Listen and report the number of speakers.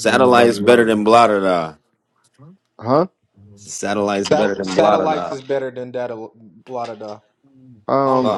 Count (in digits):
3